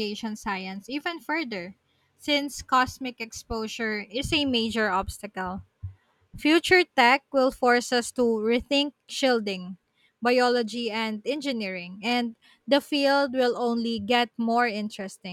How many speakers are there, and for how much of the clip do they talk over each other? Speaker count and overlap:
one, no overlap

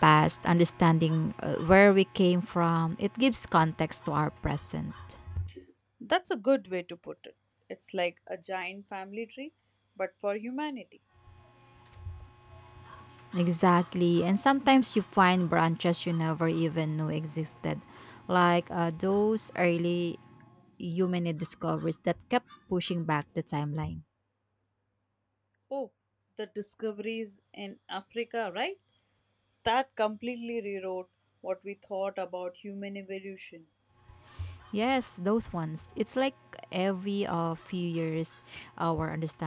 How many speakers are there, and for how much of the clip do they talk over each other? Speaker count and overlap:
two, no overlap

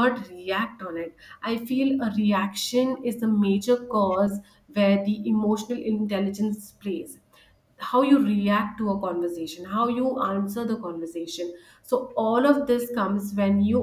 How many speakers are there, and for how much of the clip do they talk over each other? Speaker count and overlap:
one, no overlap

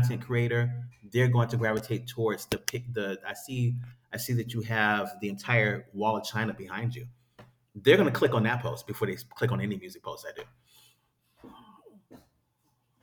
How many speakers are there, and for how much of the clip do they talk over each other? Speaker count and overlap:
one, no overlap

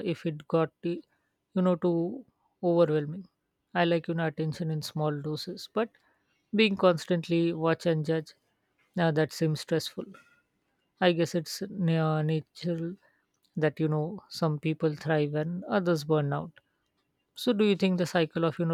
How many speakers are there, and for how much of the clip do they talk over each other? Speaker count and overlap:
one, no overlap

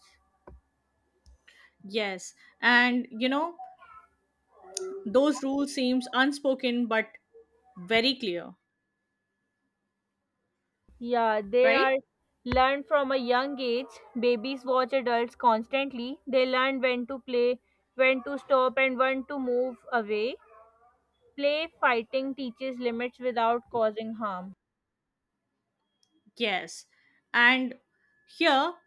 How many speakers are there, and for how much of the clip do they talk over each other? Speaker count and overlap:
two, about 1%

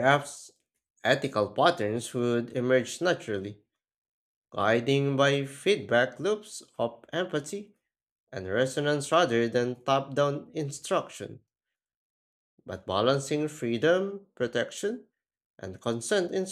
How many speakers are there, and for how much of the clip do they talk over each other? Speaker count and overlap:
one, no overlap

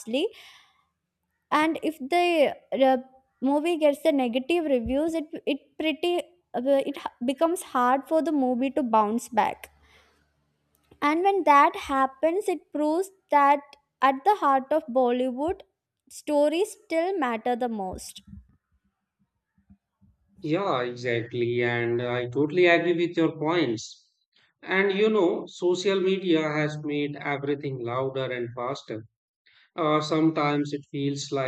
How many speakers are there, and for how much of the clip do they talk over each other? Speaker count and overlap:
two, no overlap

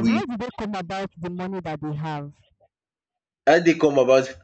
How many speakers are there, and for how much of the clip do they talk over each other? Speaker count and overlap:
two, about 5%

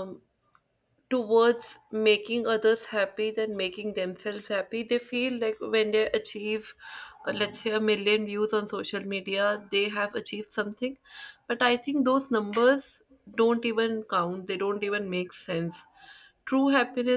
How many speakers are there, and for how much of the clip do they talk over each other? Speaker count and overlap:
one, no overlap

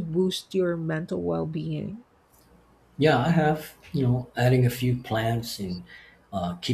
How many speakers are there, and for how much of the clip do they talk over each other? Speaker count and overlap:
two, no overlap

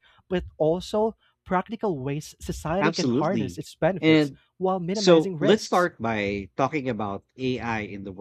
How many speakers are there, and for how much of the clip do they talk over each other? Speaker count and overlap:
two, about 23%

